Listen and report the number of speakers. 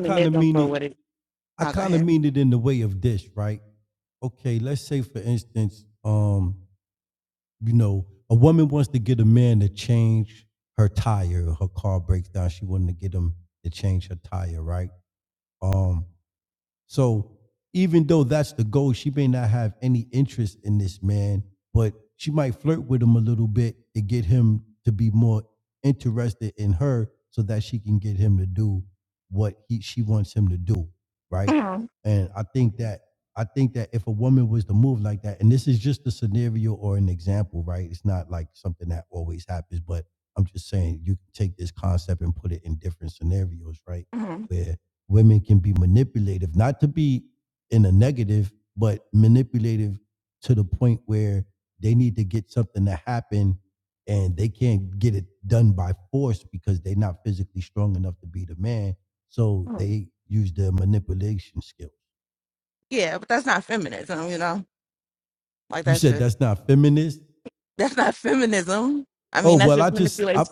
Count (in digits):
2